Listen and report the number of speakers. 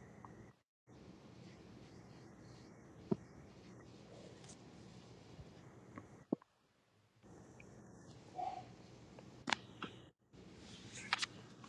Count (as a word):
zero